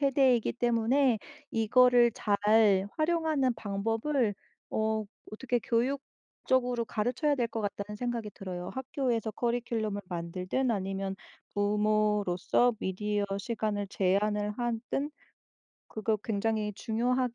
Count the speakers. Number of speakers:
one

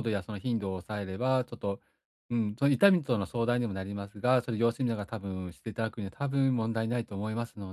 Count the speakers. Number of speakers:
one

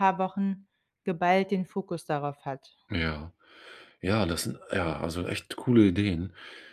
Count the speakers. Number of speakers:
two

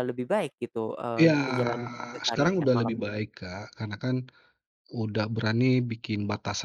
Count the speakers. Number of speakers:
two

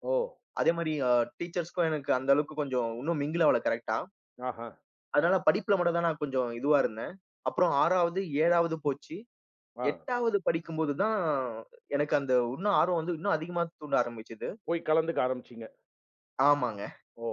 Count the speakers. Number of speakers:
two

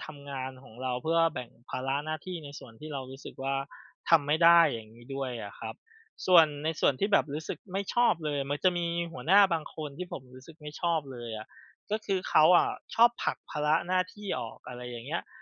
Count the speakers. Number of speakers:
one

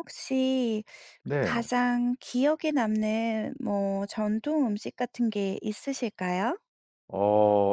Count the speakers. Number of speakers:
two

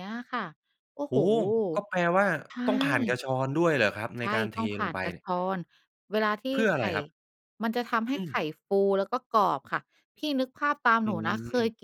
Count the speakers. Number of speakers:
two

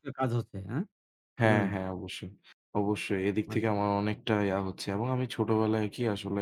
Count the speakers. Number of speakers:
two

